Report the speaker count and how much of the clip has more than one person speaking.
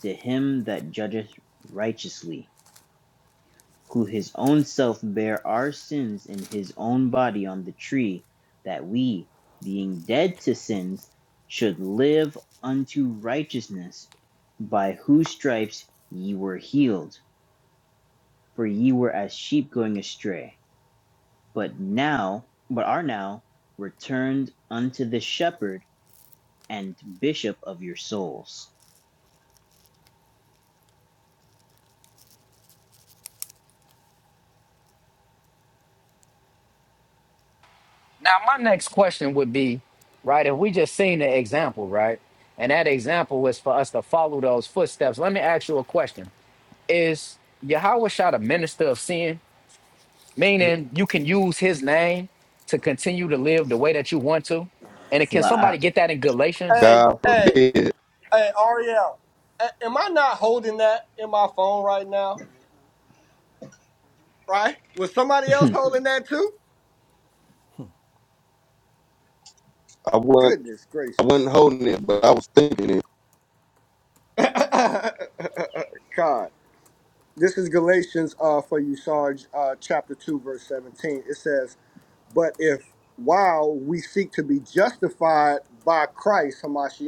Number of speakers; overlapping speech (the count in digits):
4, about 2%